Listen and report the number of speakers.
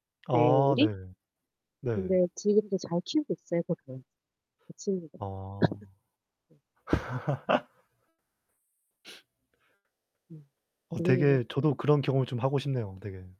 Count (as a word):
two